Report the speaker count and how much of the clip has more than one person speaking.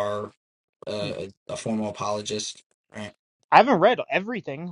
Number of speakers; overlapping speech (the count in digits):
2, no overlap